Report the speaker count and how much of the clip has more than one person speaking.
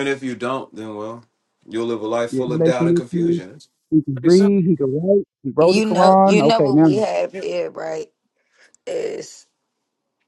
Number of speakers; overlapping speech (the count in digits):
3, about 27%